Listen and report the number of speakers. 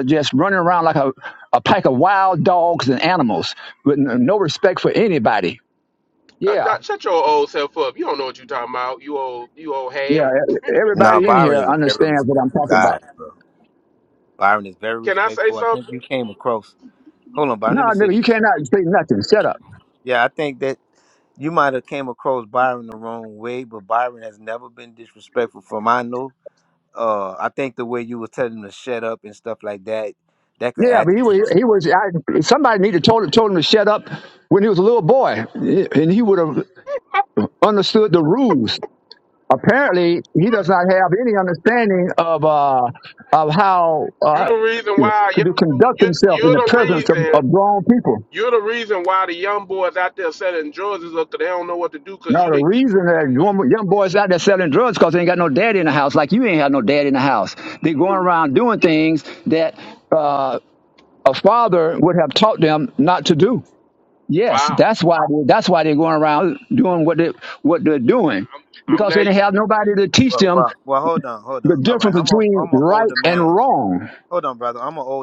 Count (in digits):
3